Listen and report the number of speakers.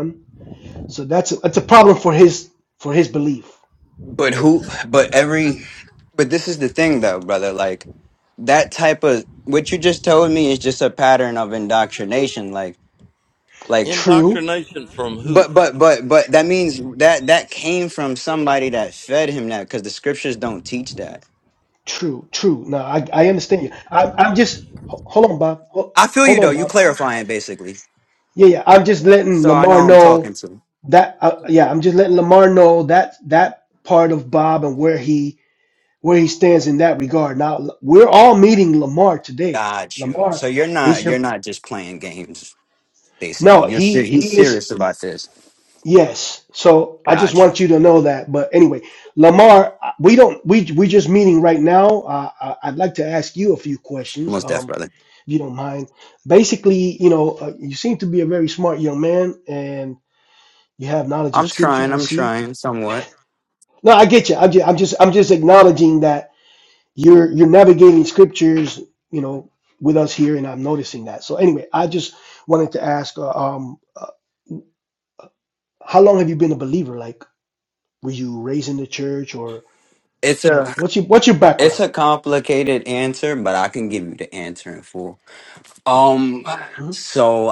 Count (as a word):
three